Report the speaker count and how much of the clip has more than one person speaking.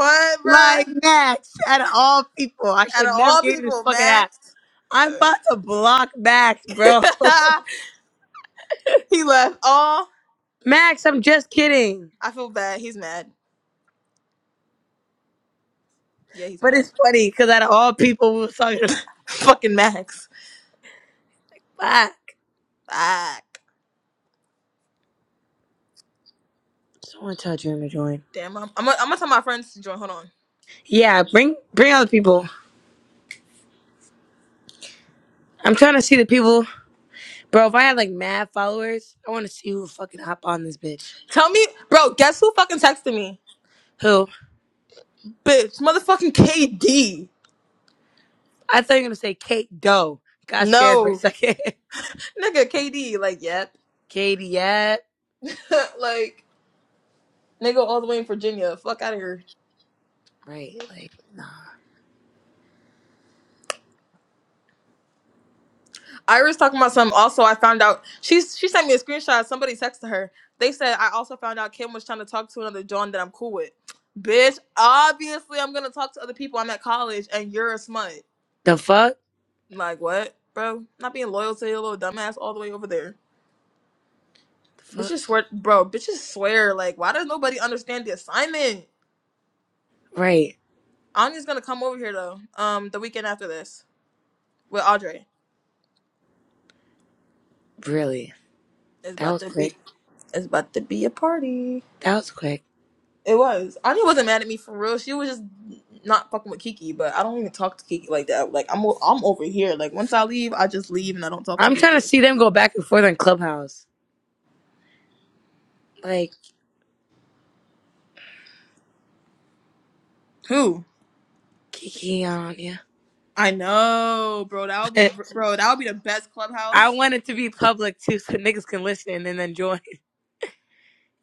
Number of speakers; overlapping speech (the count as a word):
two, about 3%